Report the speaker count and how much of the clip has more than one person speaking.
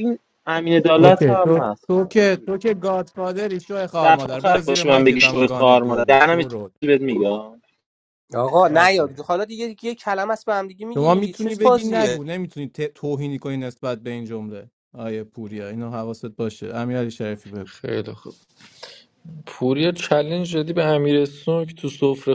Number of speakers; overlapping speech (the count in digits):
4, about 22%